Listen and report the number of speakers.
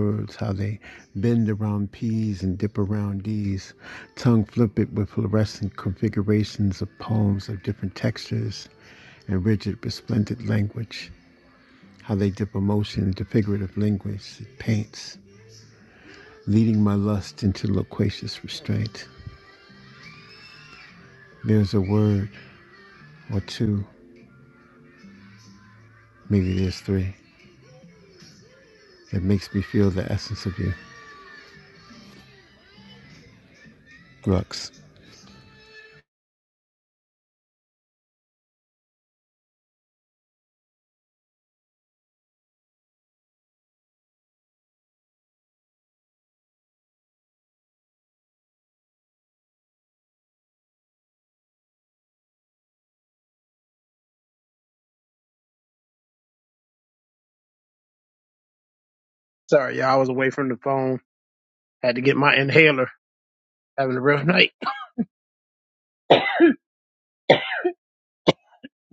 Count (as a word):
two